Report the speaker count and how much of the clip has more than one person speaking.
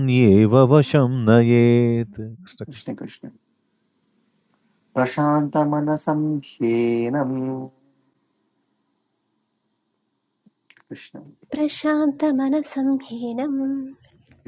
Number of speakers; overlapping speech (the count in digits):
3, no overlap